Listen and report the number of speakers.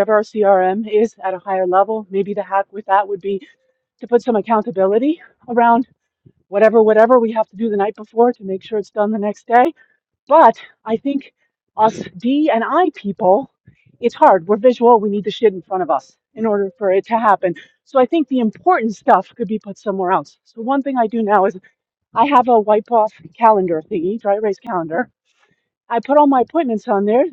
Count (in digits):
1